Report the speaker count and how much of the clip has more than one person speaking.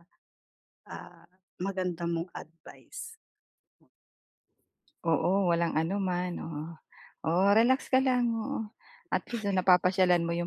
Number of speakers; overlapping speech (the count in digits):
2, no overlap